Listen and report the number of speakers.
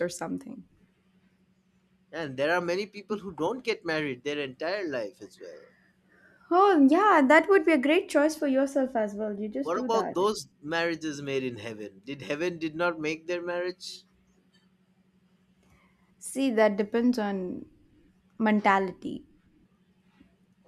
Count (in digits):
2